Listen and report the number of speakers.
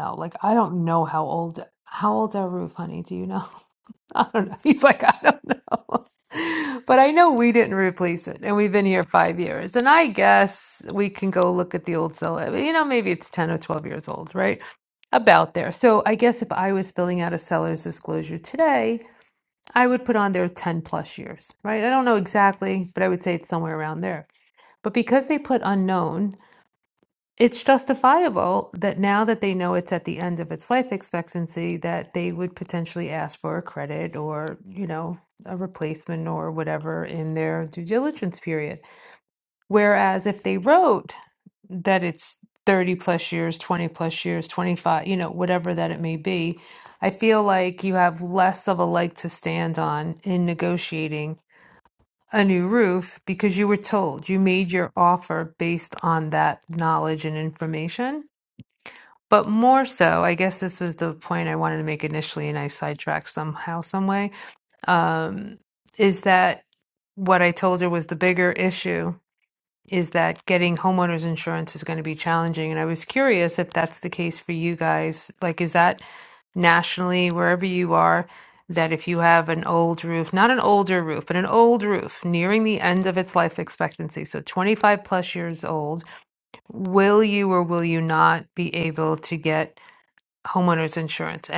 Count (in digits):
1